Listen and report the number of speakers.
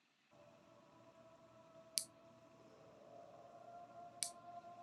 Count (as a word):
zero